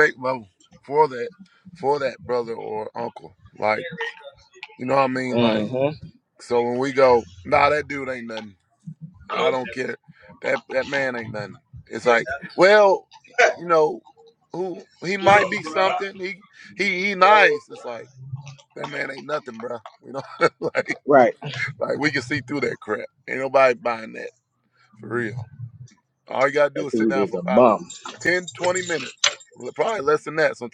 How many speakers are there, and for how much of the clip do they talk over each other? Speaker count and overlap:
two, about 4%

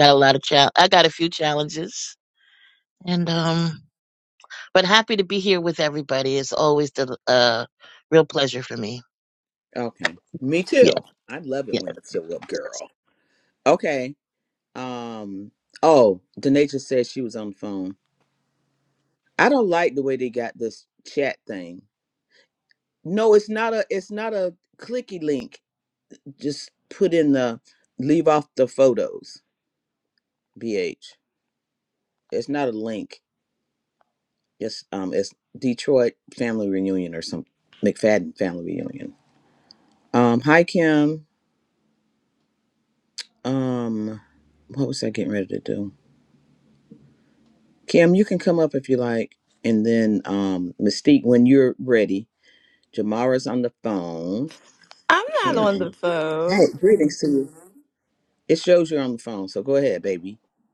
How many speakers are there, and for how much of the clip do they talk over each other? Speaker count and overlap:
three, about 2%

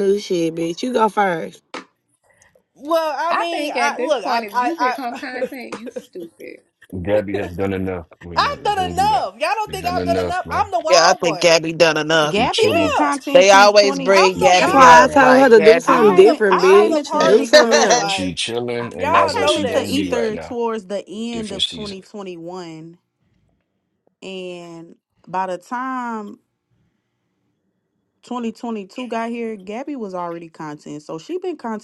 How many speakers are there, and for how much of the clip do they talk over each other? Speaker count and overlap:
six, about 38%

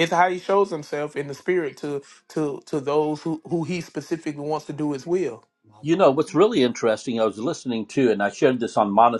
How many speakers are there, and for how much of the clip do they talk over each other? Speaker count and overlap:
two, no overlap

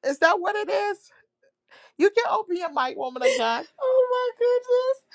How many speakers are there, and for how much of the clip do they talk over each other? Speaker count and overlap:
two, no overlap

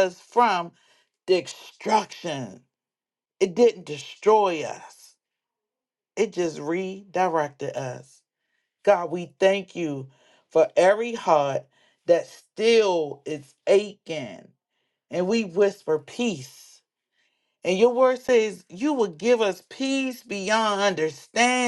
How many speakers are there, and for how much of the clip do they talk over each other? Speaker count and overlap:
one, no overlap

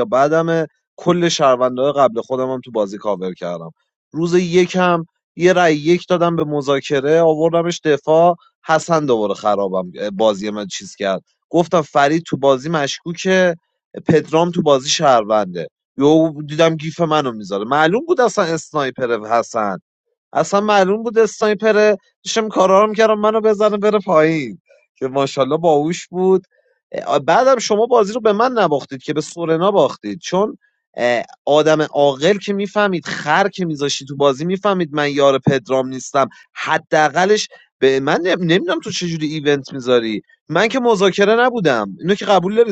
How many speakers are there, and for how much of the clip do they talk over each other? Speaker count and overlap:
one, no overlap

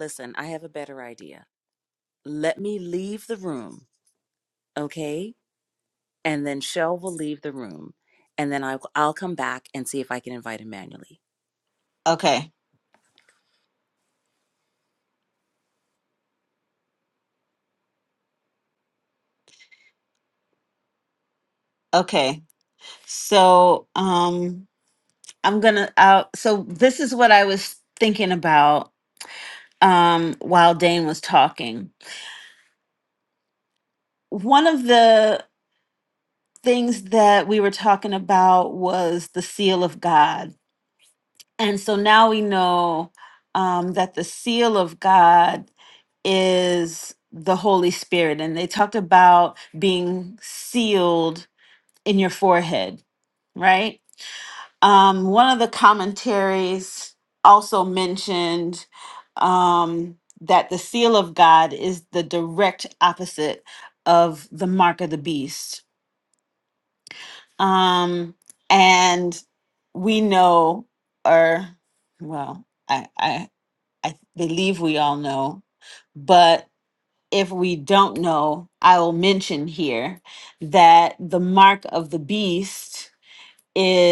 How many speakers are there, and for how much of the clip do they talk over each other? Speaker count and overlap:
two, no overlap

